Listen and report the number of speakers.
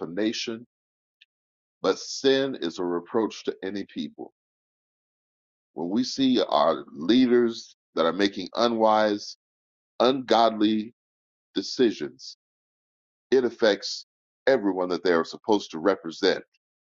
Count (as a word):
one